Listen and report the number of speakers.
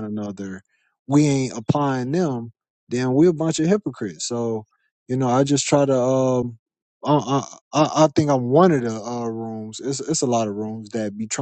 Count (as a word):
one